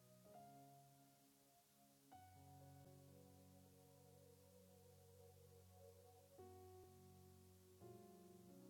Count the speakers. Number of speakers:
zero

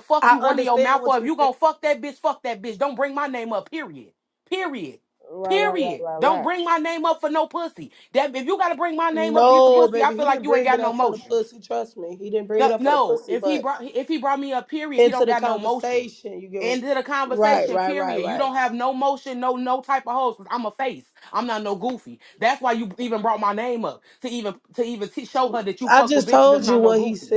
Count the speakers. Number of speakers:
two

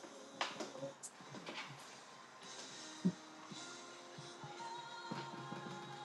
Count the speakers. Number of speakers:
zero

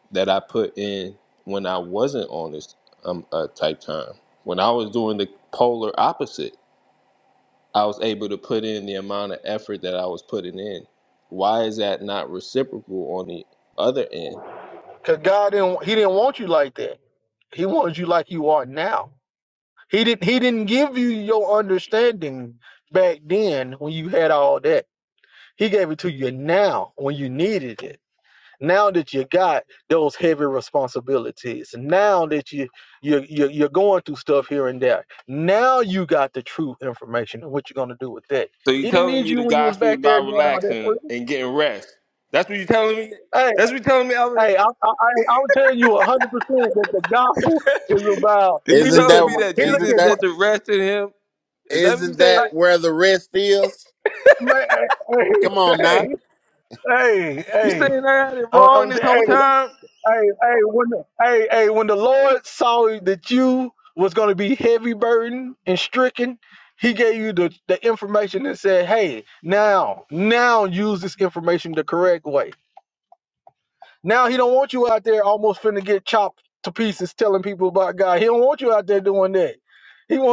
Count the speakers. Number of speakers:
three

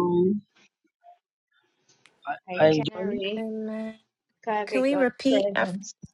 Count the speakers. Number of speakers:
three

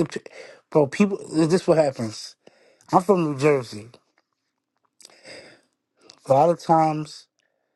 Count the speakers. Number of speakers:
one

